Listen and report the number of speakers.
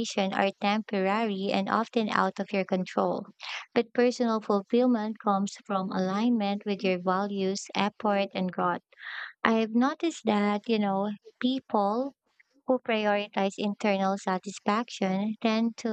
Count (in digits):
1